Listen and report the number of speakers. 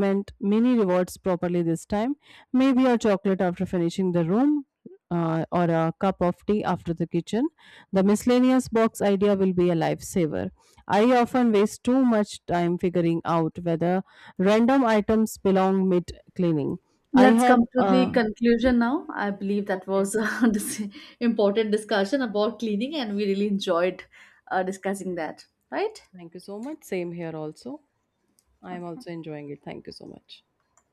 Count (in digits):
2